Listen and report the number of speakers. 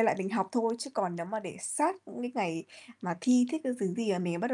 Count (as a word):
one